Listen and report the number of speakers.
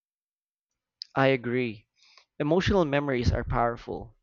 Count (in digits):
1